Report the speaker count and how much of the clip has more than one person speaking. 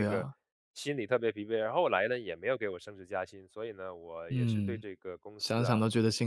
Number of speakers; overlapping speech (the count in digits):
2, about 18%